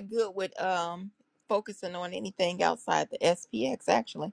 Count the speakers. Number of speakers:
one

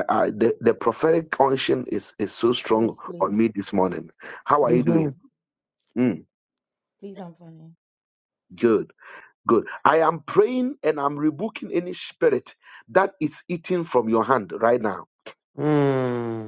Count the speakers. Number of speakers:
three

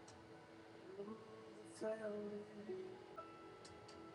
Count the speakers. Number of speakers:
zero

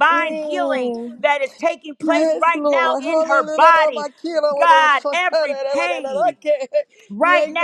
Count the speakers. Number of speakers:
two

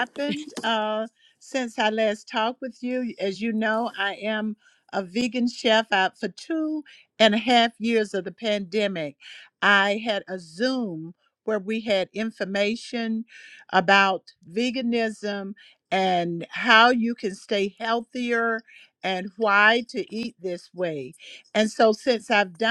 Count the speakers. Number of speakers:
one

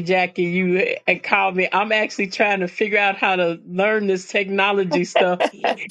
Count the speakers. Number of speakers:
one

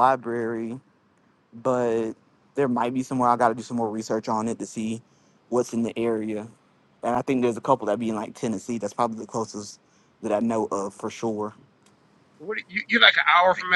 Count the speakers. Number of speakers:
two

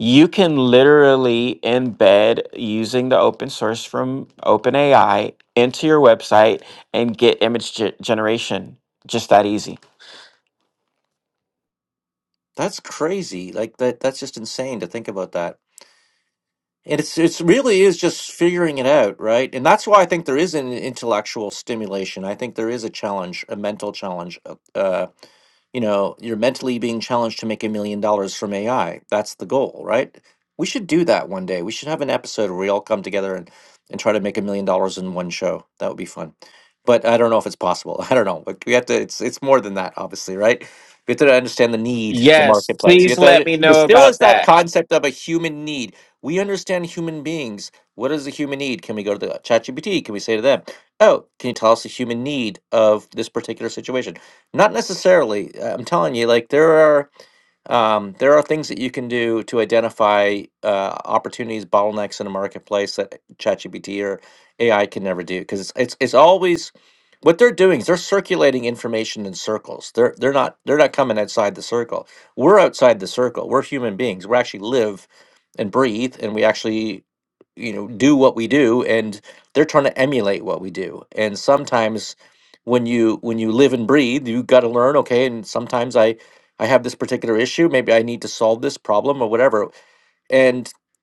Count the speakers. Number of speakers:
two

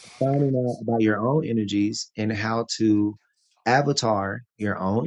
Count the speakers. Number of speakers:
one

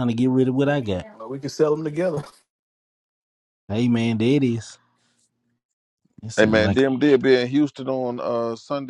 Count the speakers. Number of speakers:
three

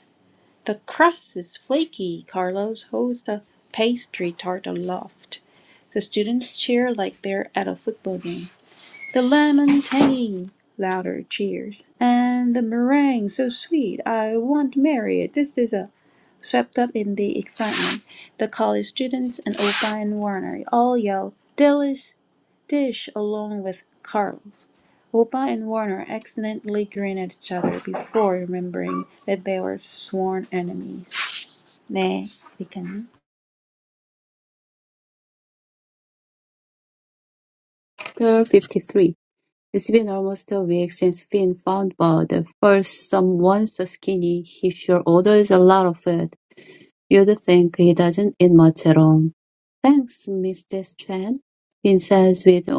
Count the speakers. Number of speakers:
two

